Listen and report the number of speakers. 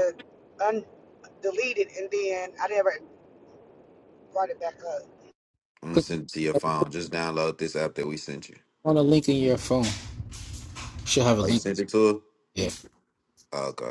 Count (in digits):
3